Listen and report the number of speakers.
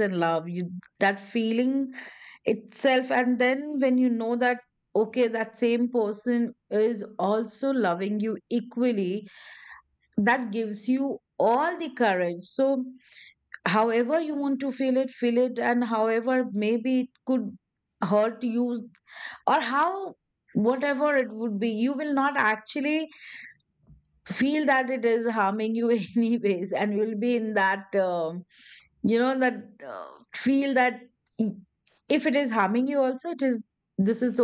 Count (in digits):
1